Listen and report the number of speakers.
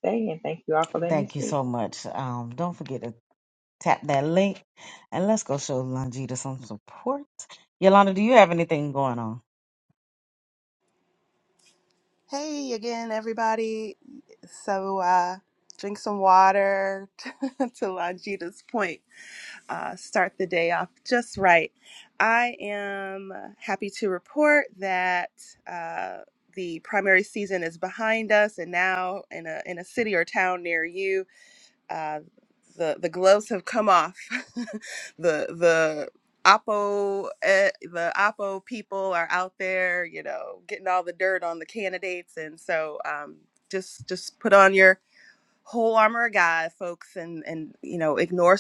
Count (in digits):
3